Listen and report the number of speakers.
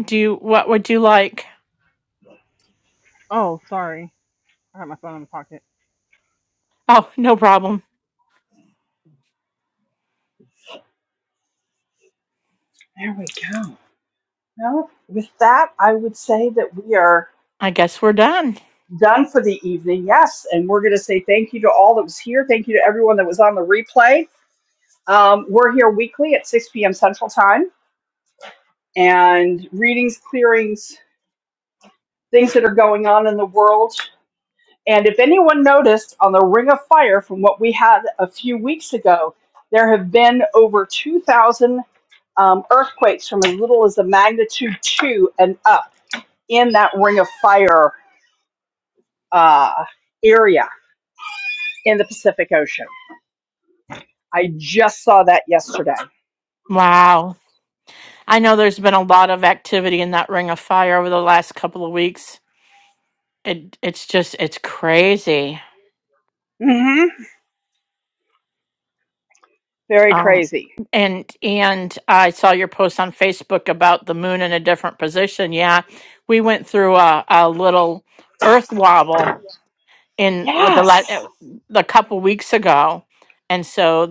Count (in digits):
3